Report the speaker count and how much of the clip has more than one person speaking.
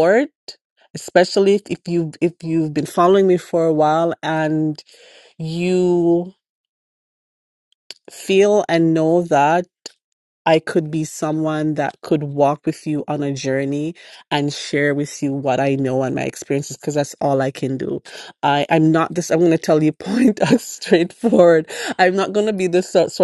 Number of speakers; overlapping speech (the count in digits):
1, no overlap